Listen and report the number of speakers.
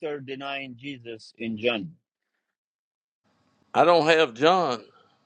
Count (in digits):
2